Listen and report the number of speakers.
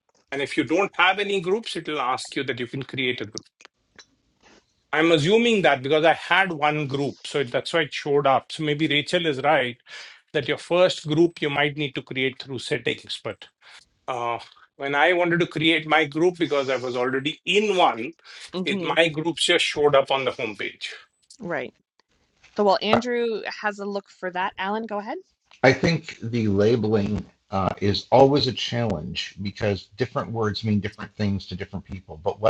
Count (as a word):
three